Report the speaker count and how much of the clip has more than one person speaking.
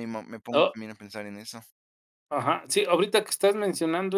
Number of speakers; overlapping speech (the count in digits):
2, about 6%